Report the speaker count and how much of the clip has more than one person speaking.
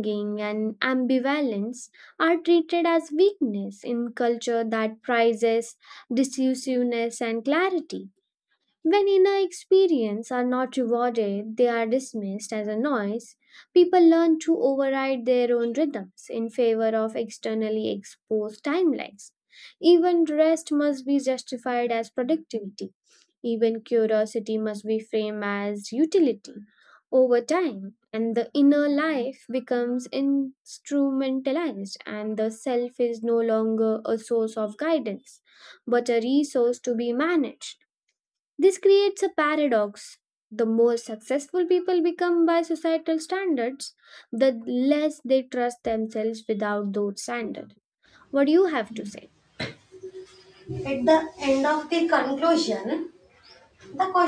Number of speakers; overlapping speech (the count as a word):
two, no overlap